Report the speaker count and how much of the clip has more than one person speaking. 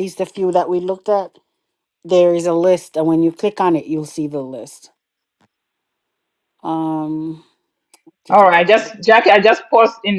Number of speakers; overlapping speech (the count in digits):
2, no overlap